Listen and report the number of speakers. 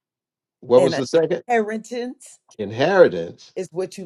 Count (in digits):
2